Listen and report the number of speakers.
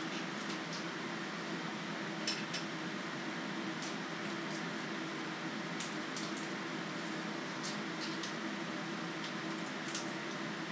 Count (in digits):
0